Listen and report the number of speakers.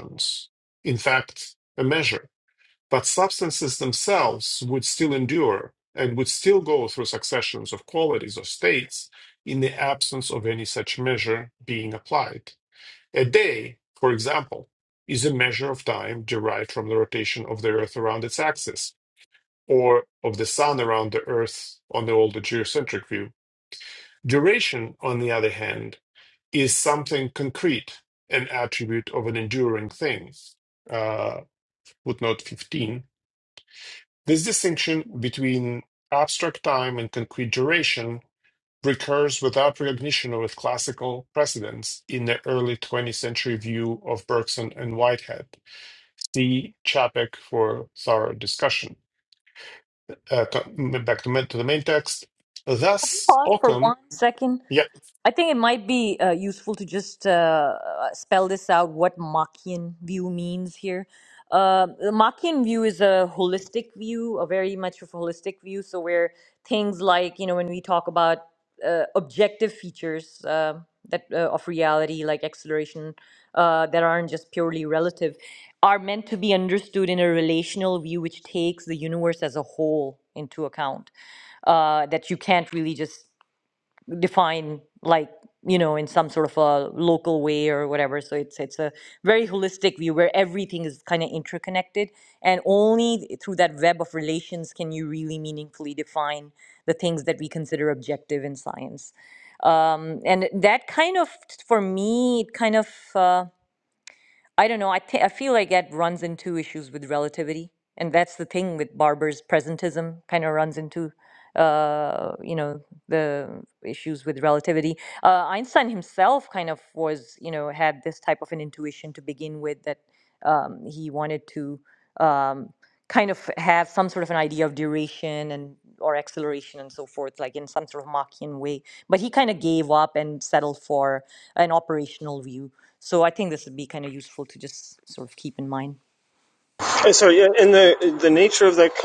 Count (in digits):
3